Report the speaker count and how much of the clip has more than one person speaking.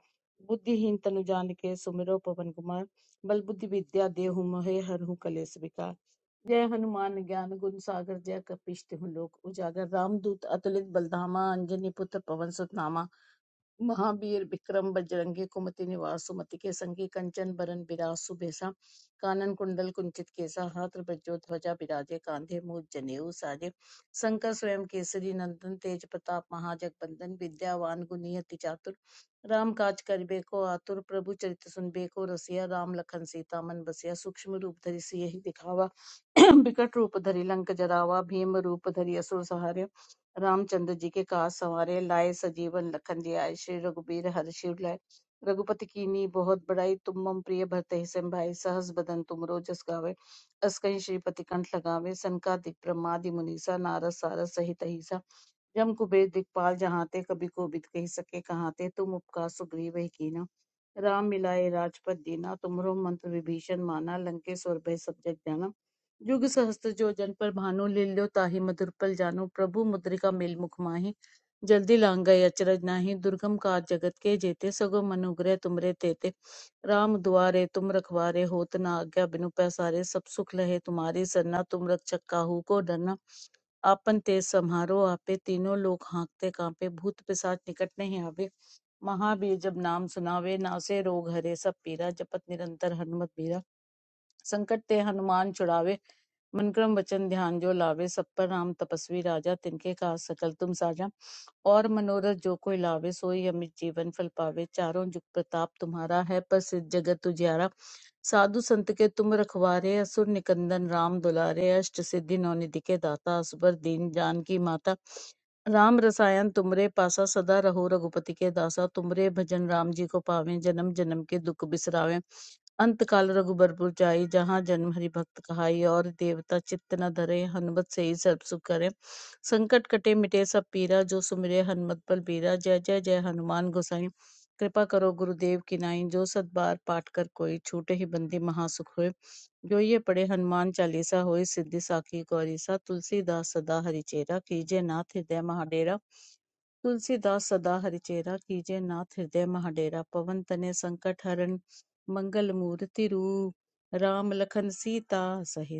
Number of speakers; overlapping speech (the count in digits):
1, no overlap